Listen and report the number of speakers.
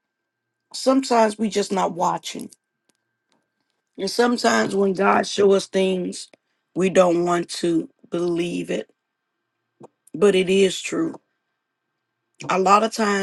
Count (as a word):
one